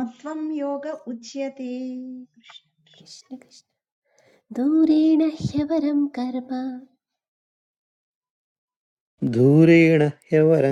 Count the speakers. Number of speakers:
3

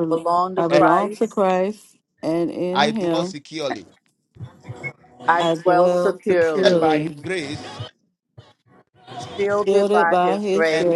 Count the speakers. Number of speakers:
3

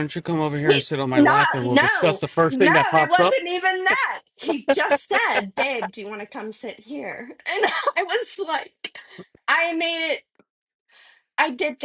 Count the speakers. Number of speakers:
2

